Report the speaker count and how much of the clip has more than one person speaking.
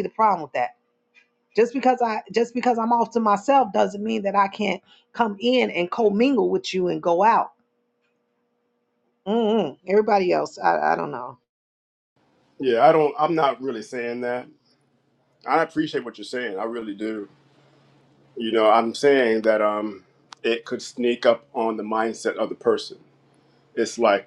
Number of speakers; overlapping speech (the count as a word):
two, no overlap